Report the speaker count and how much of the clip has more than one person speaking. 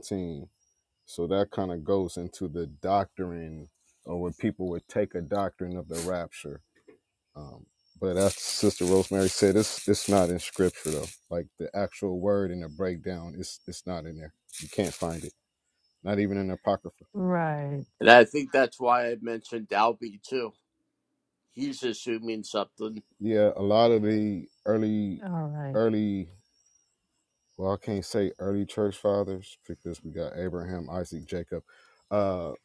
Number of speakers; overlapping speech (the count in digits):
3, under 1%